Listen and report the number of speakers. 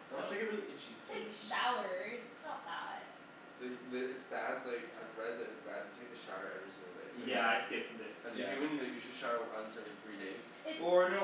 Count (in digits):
4